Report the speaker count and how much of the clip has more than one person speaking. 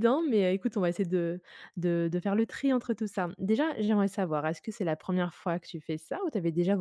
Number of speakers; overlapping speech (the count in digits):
1, no overlap